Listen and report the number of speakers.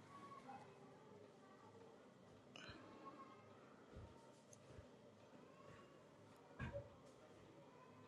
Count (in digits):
0